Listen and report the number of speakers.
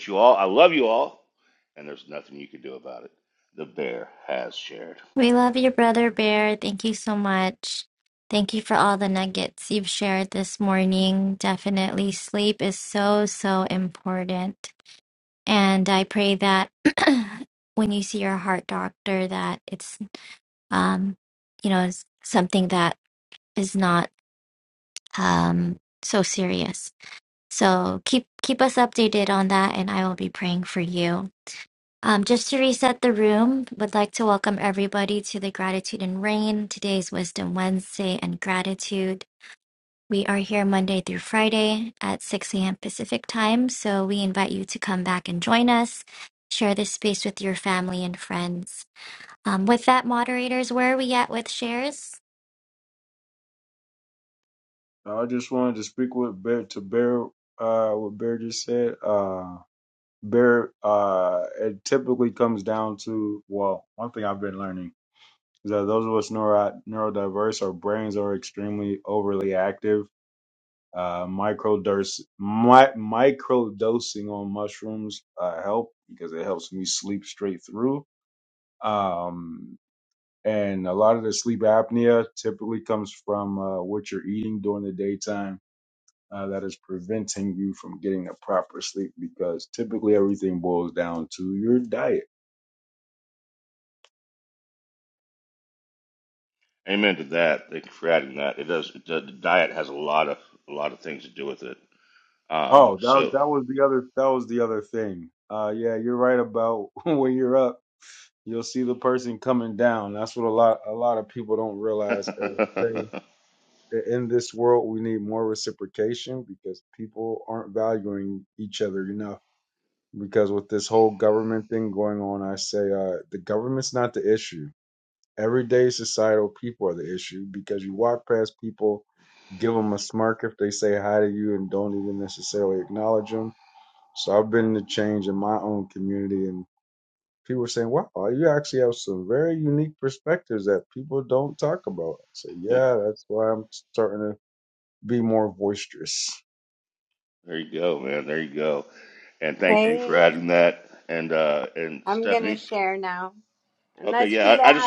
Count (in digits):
4